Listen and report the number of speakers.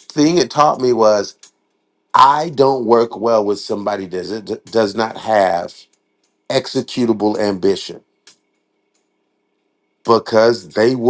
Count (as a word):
one